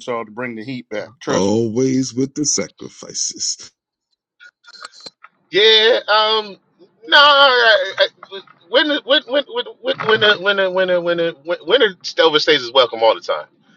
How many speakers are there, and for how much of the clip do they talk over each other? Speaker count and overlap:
three, about 2%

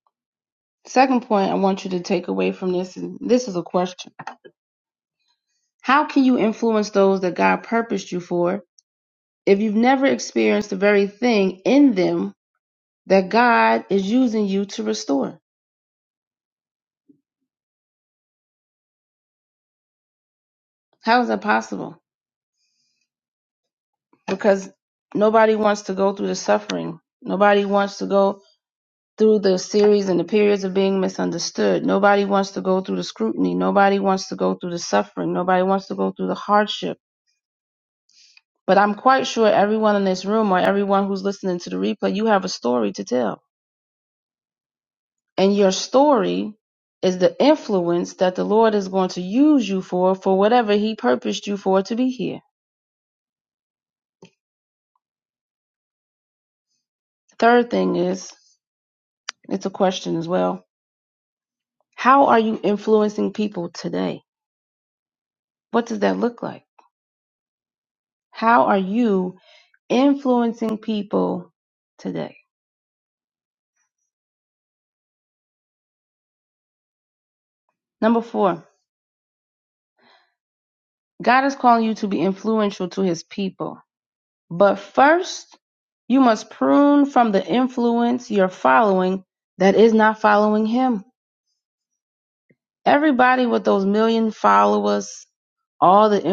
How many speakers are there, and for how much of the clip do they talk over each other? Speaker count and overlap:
one, no overlap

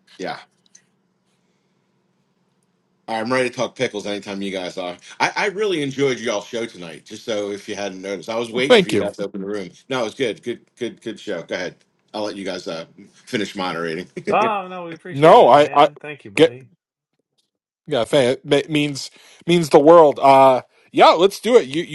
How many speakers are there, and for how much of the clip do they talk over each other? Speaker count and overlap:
three, about 6%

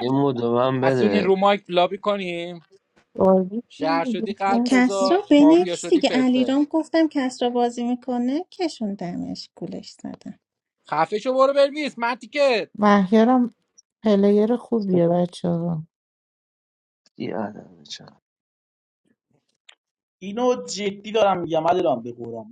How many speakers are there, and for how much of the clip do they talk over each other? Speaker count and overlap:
five, about 14%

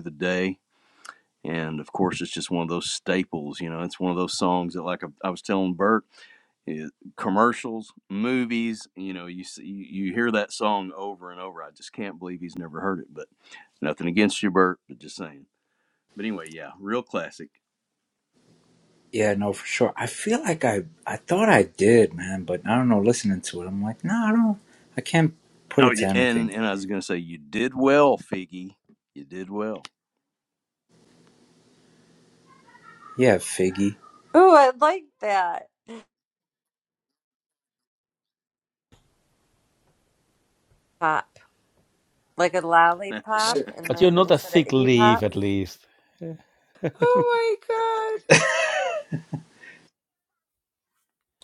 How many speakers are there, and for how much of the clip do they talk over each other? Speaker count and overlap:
five, about 5%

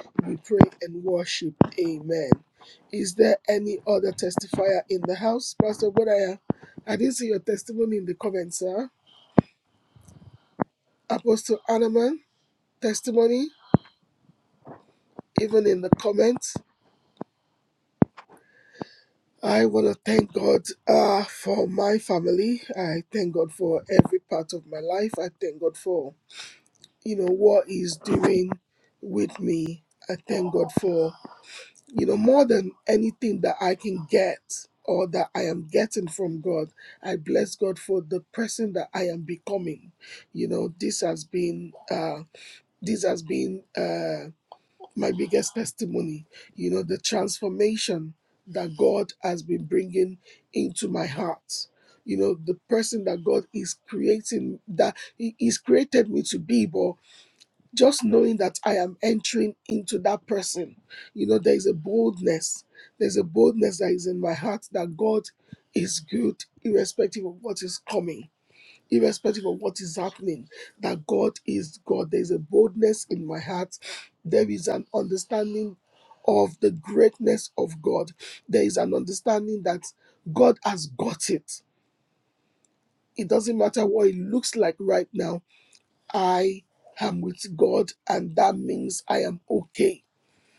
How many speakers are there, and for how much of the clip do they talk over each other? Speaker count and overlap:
one, no overlap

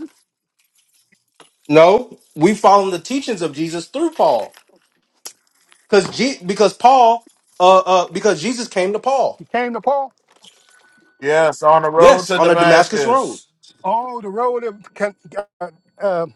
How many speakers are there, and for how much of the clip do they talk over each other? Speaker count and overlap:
three, about 7%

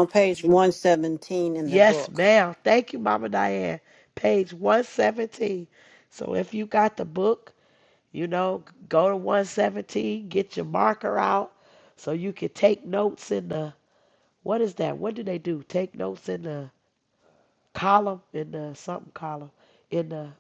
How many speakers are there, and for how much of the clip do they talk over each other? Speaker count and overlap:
two, about 2%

